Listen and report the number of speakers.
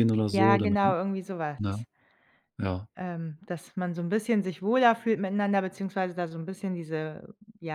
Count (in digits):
2